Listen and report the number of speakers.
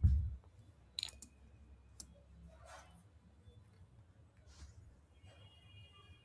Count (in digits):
0